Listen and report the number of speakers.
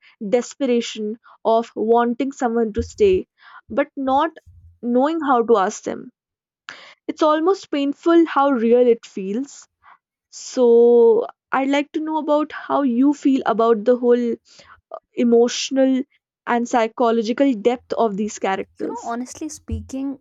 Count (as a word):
two